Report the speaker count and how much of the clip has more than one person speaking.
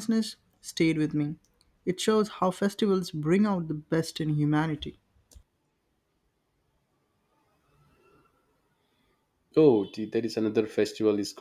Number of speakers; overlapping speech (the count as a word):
two, no overlap